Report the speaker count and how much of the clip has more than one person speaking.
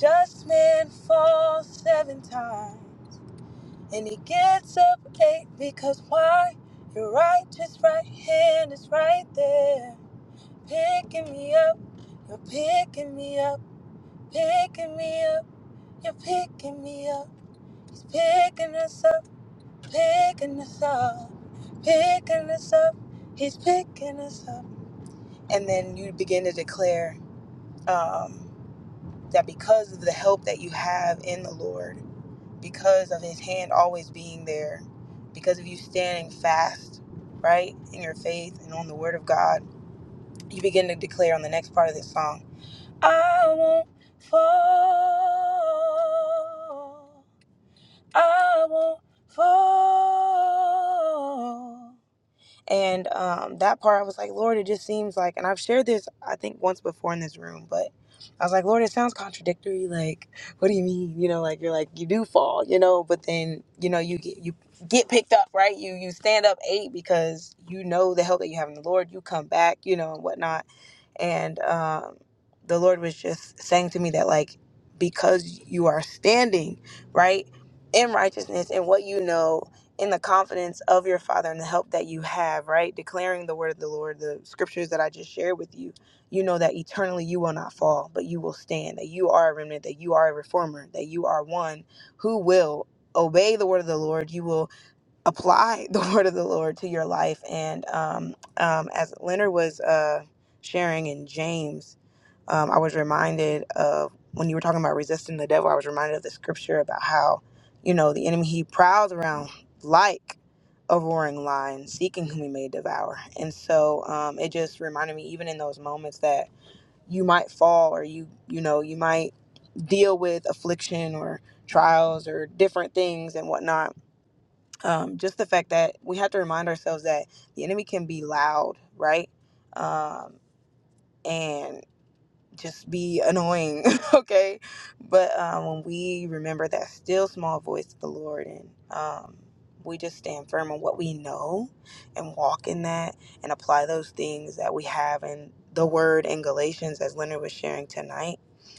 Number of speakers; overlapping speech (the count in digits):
1, no overlap